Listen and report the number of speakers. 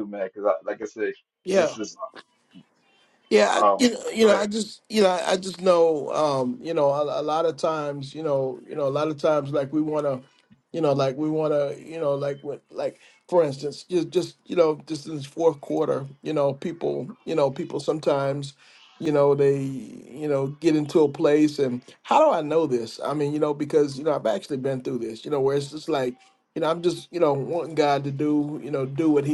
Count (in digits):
2